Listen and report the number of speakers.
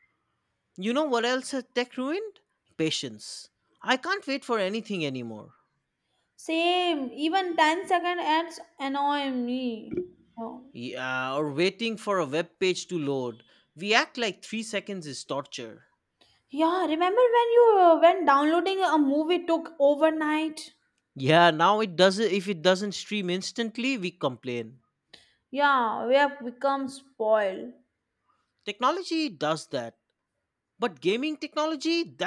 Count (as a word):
two